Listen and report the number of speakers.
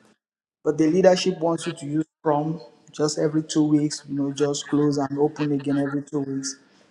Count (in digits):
1